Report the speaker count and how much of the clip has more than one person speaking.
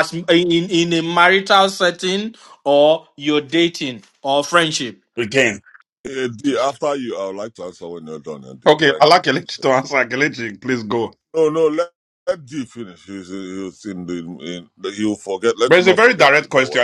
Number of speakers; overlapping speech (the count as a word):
three, about 9%